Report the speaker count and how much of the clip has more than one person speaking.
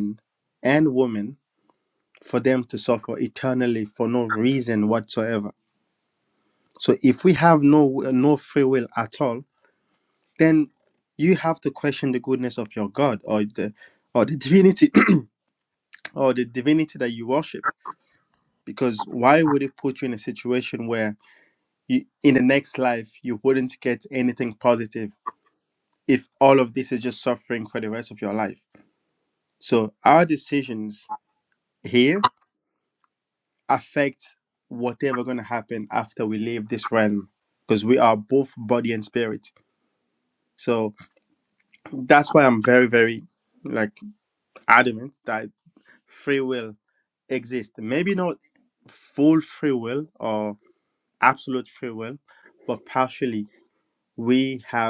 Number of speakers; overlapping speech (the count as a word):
one, no overlap